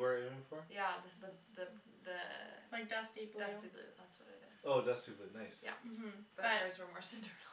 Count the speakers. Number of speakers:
3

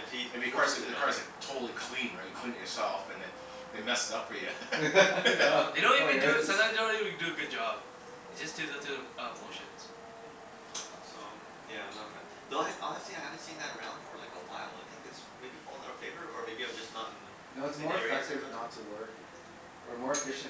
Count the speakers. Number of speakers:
4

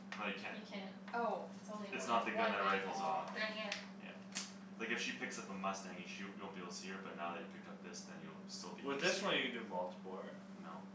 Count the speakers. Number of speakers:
4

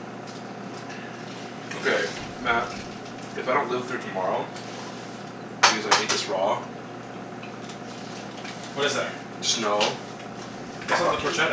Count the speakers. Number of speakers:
2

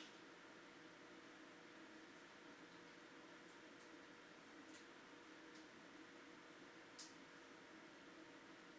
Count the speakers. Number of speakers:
0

